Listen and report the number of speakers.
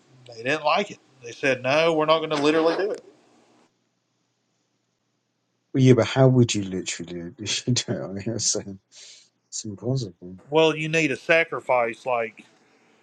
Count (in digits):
2